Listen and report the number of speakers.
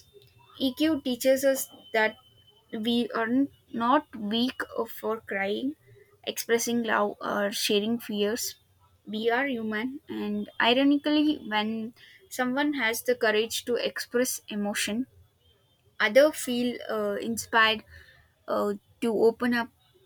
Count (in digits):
1